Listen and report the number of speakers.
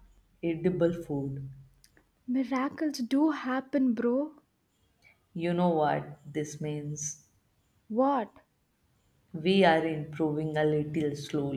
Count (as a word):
two